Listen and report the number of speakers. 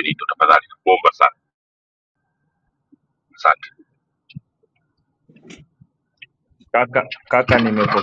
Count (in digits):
2